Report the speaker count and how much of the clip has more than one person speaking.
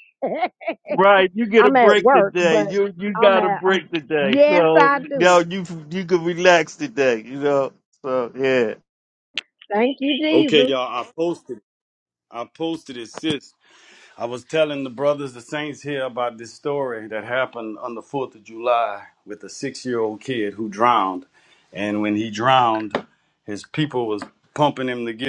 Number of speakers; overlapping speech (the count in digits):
3, about 13%